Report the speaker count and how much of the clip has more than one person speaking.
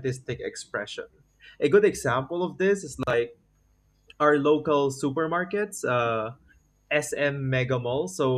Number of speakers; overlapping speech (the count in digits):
1, no overlap